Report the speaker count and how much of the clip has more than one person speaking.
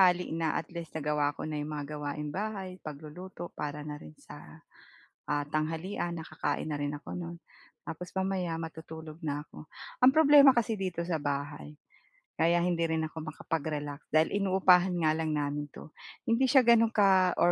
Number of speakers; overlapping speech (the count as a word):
one, no overlap